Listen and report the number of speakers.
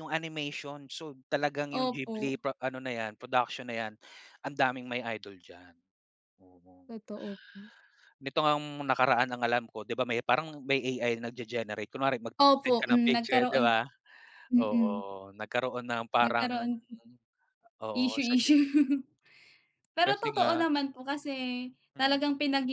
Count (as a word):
two